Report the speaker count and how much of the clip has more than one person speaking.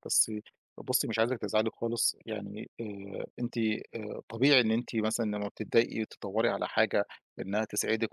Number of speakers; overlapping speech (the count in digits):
1, no overlap